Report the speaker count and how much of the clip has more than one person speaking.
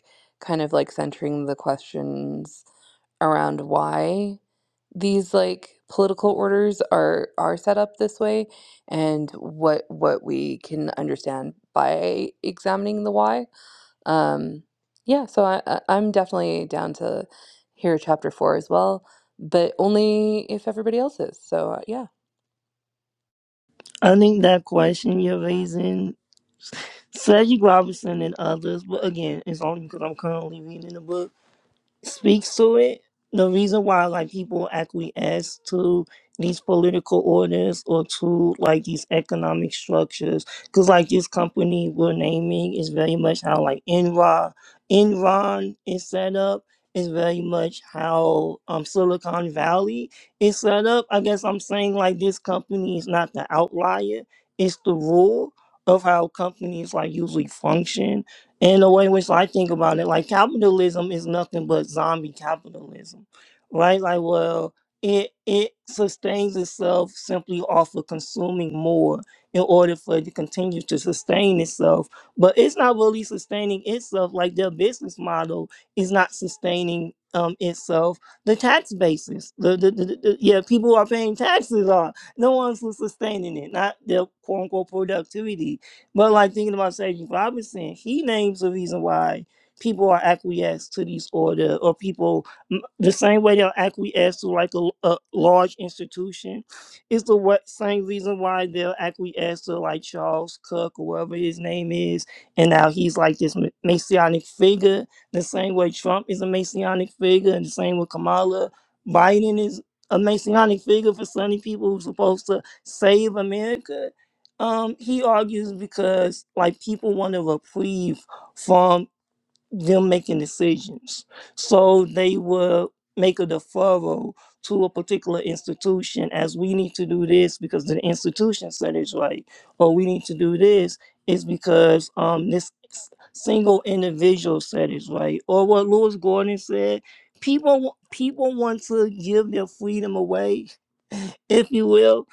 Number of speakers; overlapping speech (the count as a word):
two, no overlap